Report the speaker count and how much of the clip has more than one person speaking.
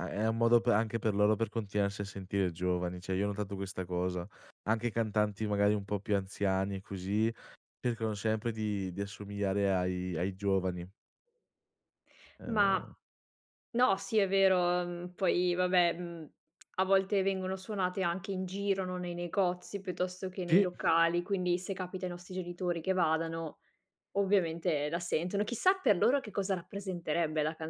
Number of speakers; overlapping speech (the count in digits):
2, about 2%